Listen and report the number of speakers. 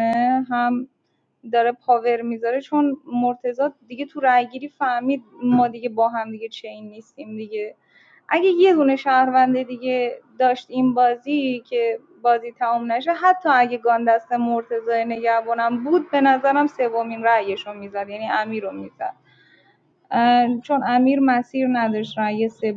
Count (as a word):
one